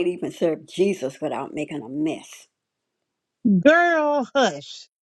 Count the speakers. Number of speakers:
2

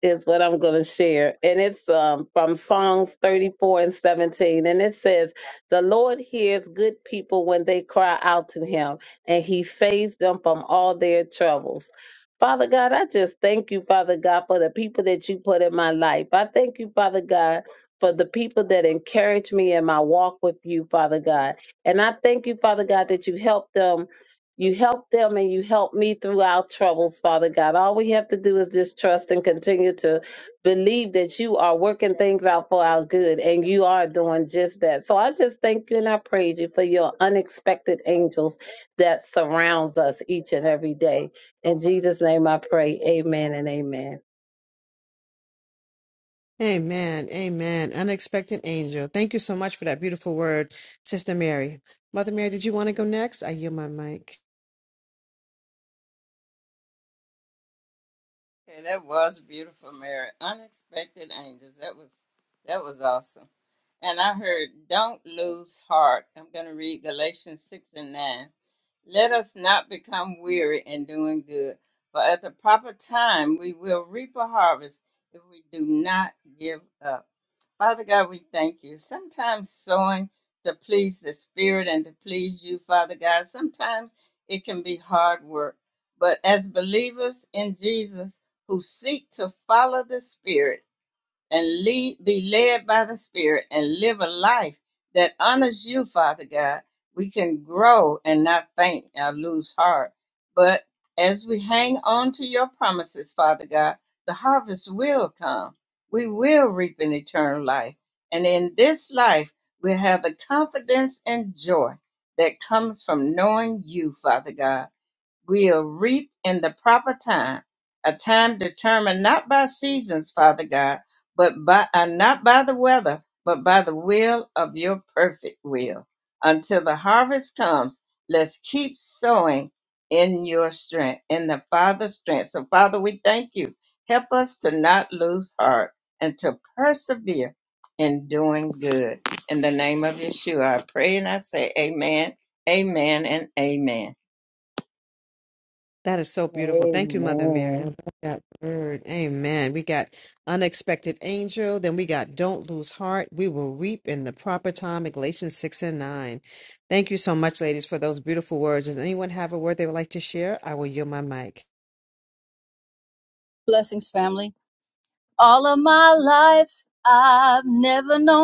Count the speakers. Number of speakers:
4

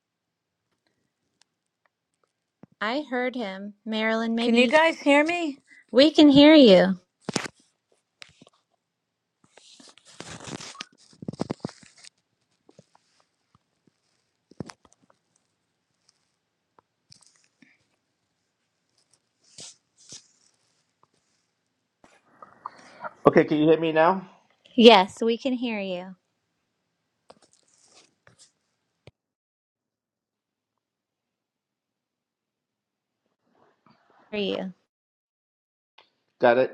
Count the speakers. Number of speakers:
3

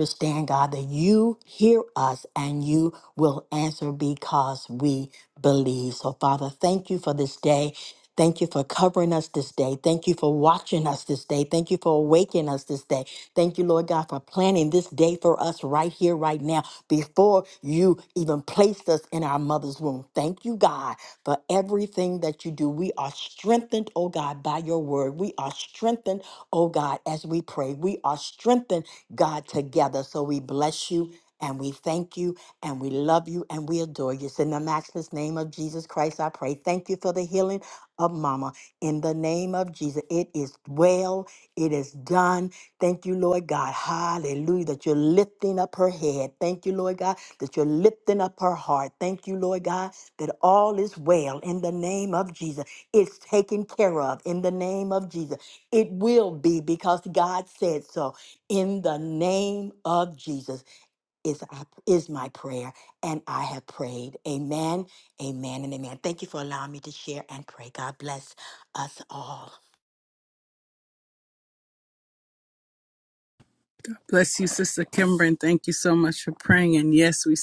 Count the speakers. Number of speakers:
2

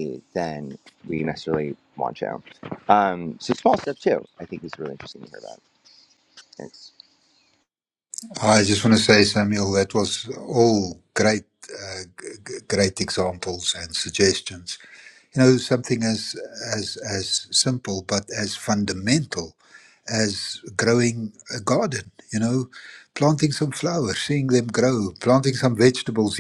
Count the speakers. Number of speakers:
2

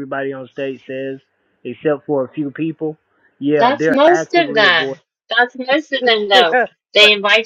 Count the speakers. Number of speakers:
2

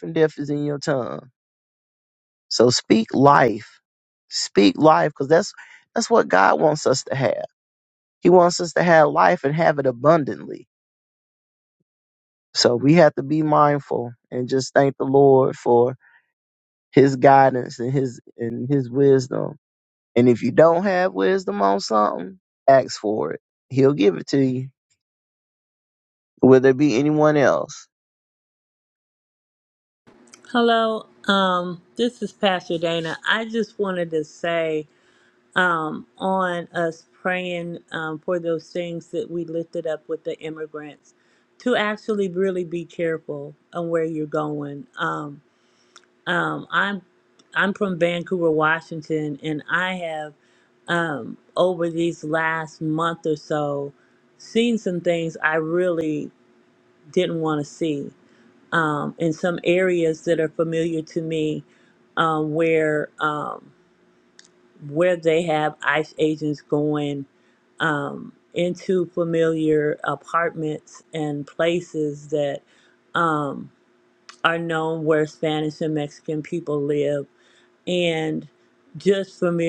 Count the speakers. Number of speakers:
2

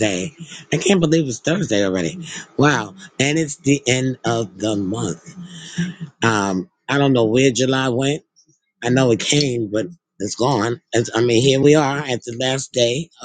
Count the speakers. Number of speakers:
1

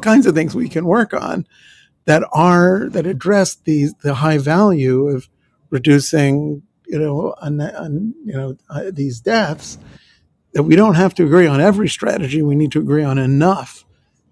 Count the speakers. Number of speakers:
1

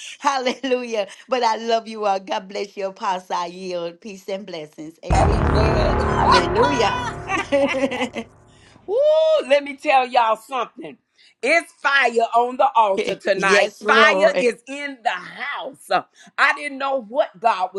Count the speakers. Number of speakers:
2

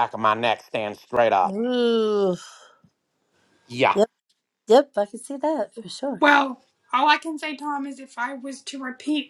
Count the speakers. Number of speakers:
3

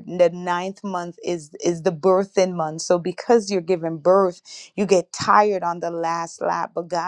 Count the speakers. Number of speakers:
1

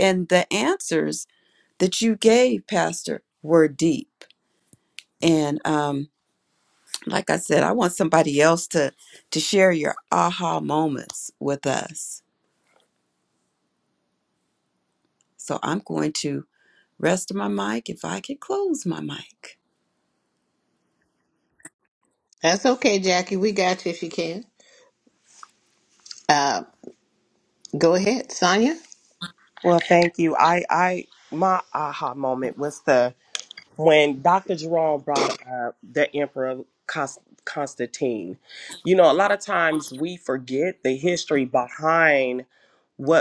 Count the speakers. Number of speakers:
3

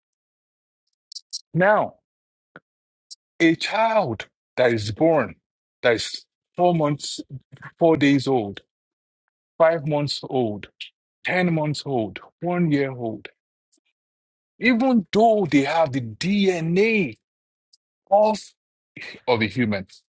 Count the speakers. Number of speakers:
1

